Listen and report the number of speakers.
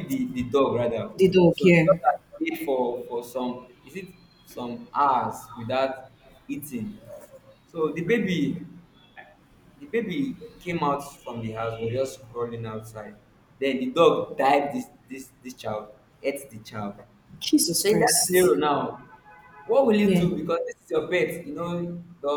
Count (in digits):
2